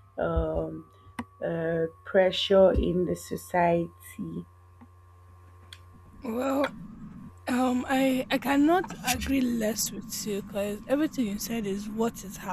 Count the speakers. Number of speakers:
2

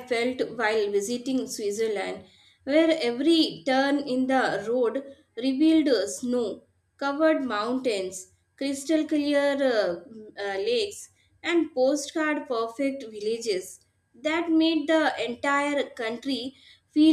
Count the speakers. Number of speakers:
1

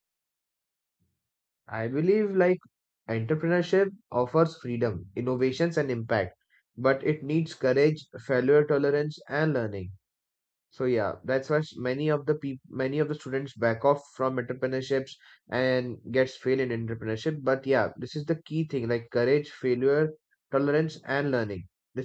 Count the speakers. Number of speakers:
1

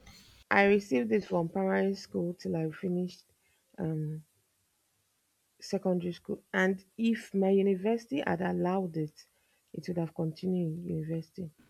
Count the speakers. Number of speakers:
1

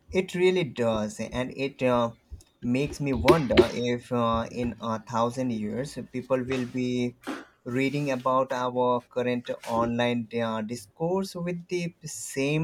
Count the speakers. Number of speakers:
1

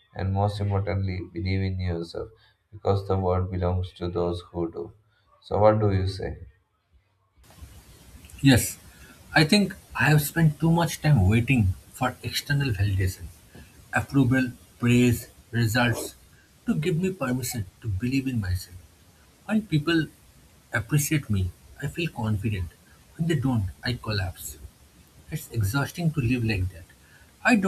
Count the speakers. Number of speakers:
2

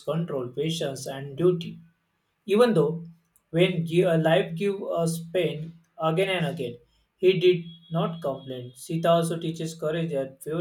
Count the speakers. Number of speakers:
1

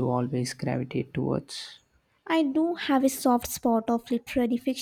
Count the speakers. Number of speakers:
2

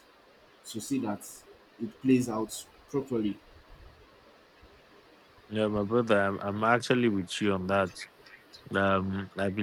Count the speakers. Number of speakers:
2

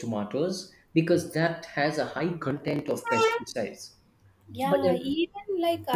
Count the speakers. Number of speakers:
2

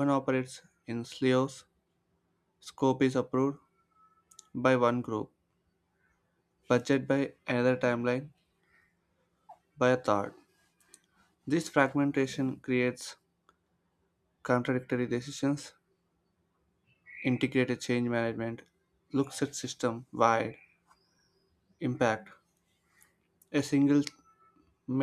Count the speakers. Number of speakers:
1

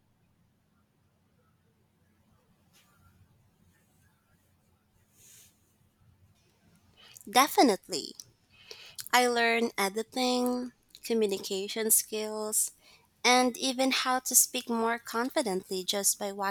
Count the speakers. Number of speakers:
1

